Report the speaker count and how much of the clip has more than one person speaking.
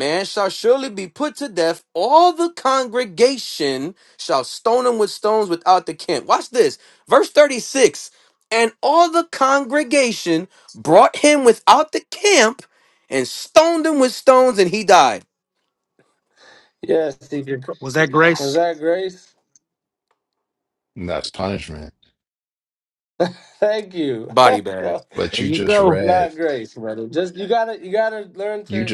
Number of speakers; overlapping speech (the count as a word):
four, about 5%